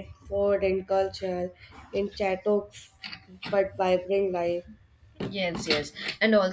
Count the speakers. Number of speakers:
2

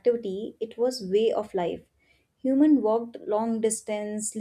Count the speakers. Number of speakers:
1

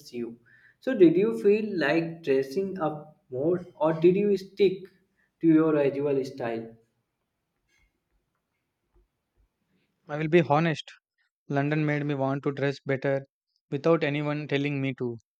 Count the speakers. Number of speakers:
2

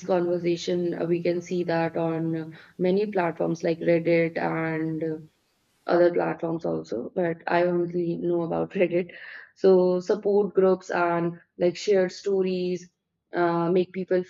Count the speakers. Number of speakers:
1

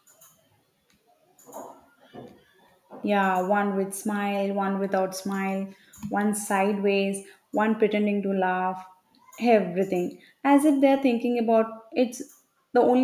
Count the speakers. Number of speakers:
1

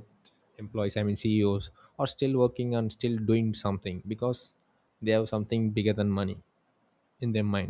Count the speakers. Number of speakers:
1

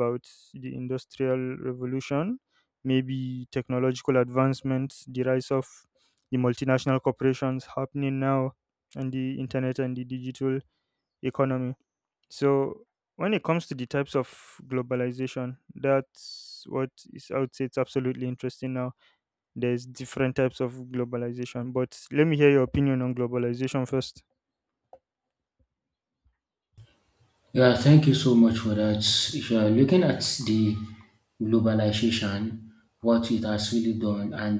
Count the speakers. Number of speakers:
2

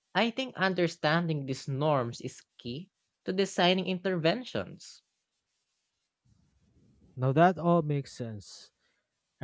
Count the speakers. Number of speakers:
2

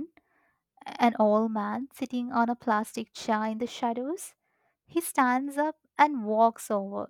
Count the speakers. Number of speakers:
1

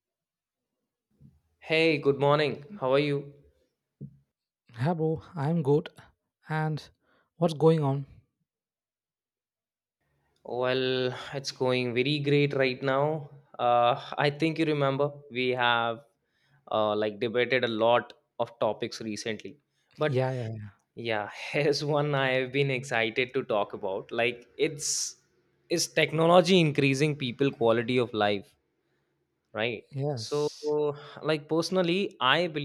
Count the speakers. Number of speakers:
2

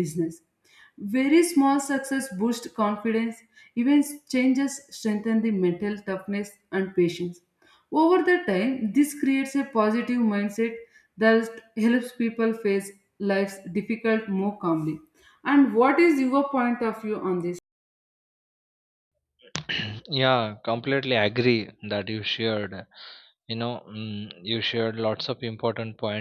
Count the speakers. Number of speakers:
2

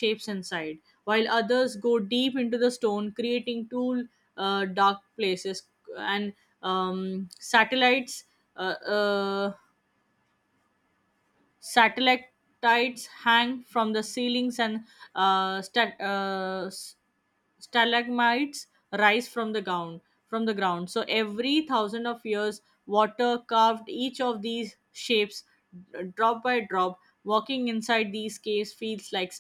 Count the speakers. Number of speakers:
1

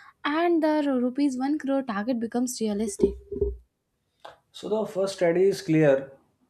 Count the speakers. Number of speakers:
2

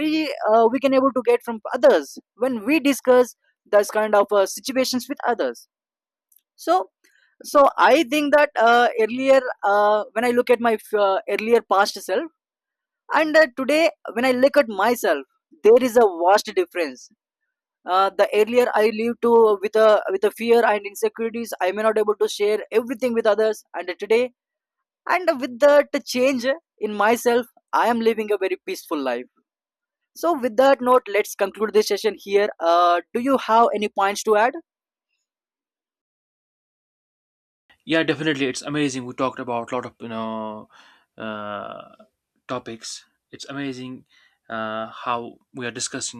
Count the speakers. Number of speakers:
2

